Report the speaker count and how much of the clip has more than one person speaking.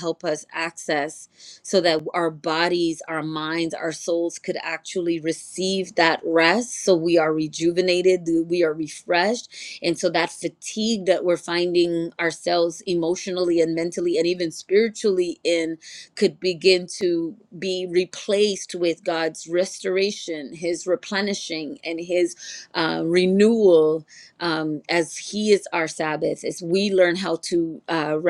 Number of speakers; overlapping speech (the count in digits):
1, no overlap